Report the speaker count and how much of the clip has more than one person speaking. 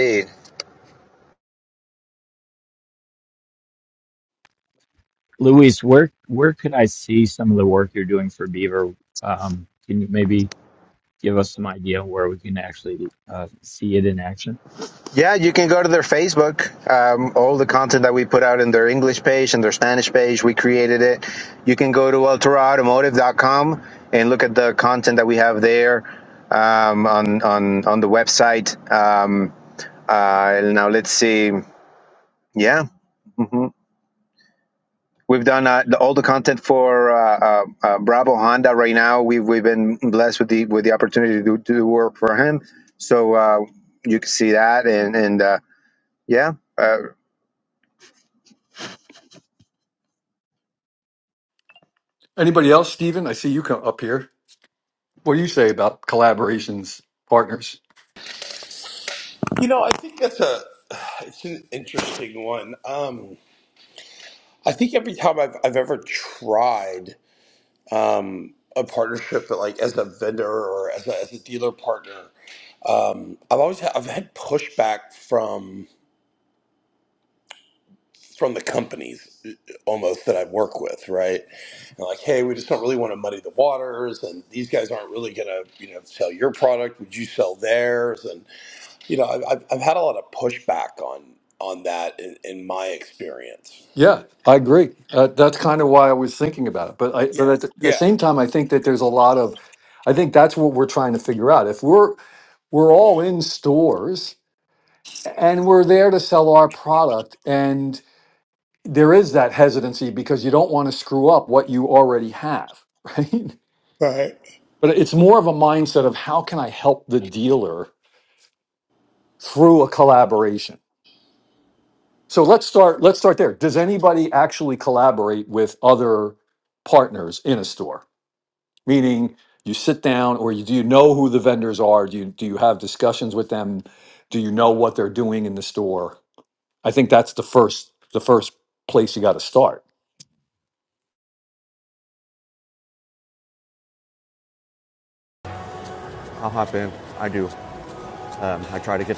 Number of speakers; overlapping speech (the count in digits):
5, under 1%